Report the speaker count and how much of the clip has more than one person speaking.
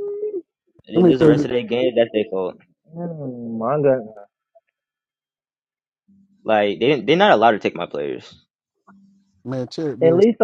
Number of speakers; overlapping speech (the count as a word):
three, about 7%